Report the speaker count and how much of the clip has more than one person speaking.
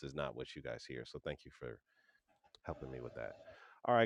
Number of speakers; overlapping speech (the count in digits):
1, no overlap